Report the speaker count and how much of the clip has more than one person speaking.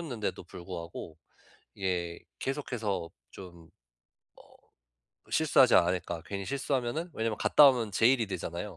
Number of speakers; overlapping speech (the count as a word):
one, no overlap